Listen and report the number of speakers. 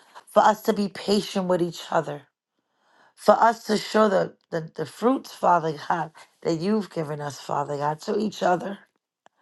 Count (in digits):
1